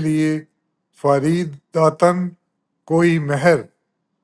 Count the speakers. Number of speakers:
1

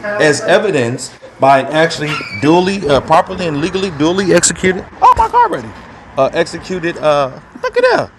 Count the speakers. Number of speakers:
1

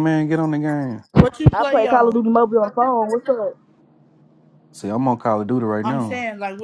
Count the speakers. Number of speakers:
3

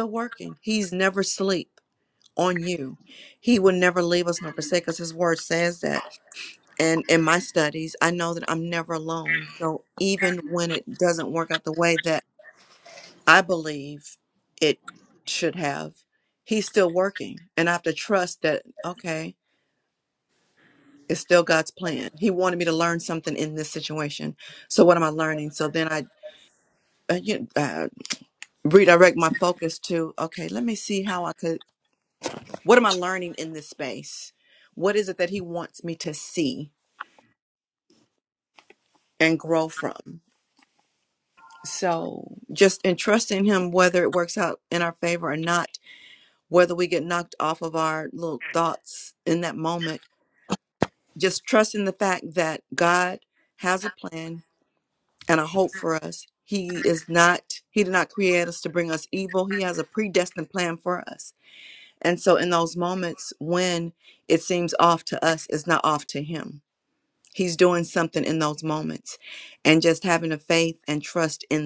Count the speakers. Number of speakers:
1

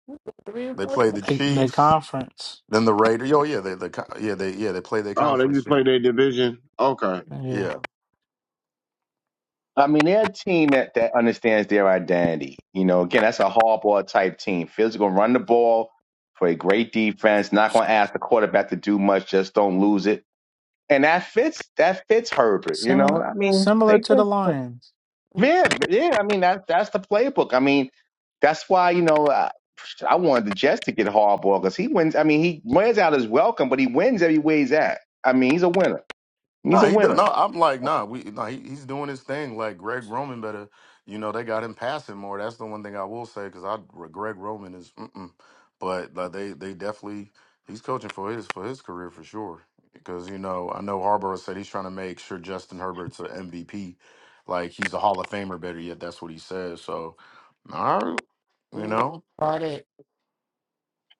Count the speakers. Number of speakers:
5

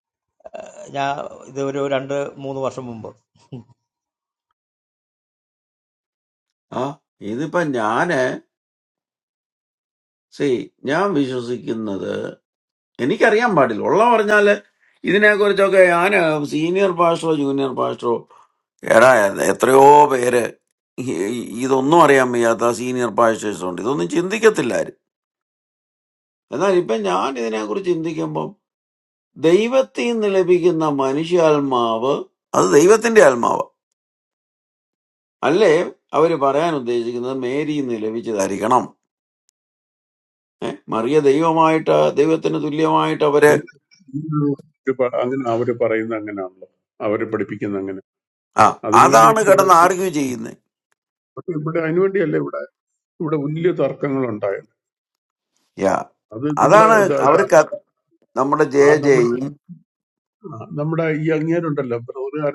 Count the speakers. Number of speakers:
3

